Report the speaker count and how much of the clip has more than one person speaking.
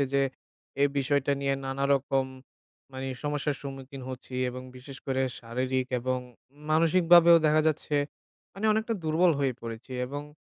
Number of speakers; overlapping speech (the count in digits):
1, no overlap